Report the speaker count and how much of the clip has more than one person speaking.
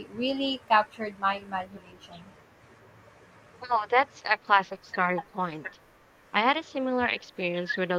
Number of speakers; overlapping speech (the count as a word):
two, no overlap